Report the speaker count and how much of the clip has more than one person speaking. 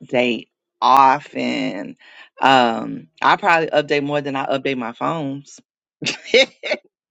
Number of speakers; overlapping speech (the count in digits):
1, no overlap